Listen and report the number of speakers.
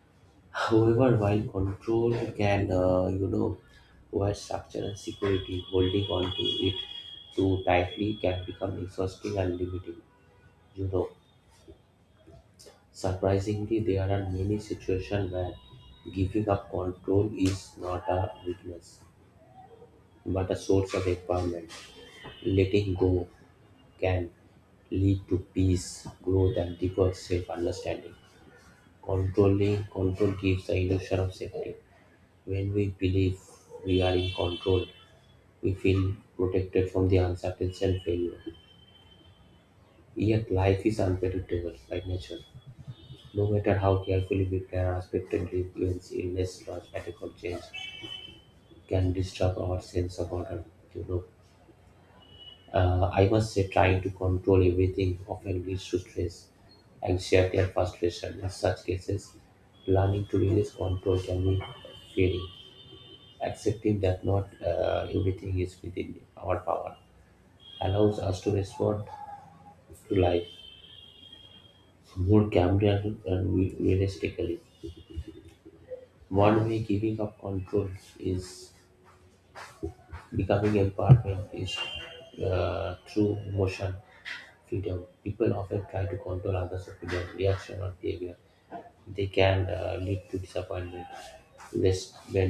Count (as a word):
one